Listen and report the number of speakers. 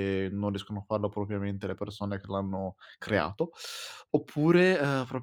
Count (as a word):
one